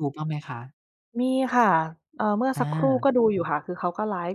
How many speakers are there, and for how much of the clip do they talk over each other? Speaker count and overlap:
2, about 11%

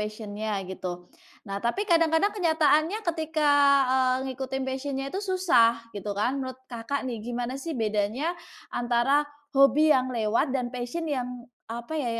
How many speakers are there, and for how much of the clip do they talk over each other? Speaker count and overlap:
1, no overlap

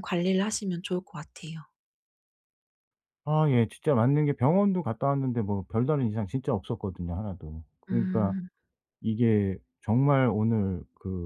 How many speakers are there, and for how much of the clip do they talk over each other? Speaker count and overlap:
2, about 4%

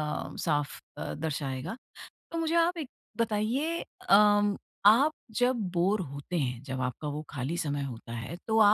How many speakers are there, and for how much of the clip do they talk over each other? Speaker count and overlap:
1, no overlap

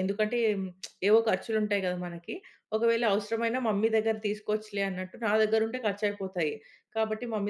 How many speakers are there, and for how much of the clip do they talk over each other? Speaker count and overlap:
1, no overlap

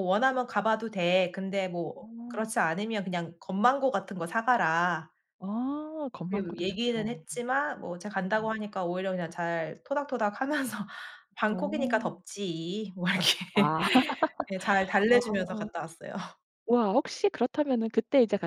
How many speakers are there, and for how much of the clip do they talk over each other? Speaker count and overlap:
2, about 14%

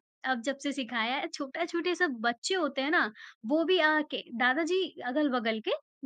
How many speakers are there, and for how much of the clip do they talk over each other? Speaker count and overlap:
1, no overlap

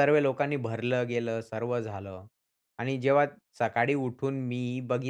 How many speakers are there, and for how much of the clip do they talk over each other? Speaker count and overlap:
1, no overlap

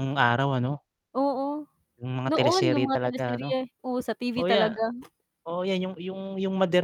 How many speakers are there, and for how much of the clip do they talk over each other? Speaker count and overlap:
2, about 24%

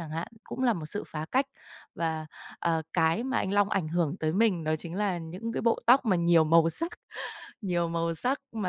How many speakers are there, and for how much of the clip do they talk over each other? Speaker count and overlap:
1, no overlap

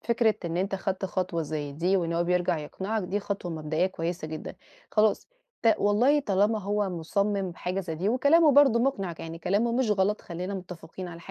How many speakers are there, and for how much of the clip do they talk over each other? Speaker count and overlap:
1, no overlap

